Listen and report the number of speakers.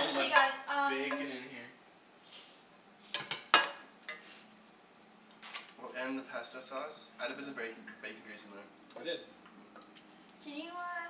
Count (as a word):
three